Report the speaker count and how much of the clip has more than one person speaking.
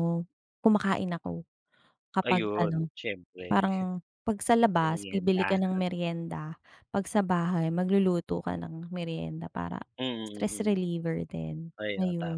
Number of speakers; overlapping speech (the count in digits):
2, about 20%